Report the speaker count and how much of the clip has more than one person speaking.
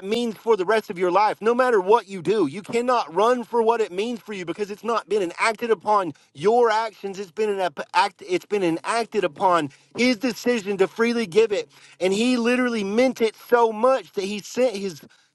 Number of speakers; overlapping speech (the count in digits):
1, no overlap